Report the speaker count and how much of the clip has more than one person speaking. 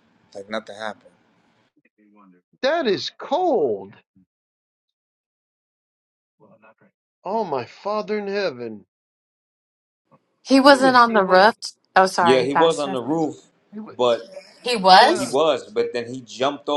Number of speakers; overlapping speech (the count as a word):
three, about 12%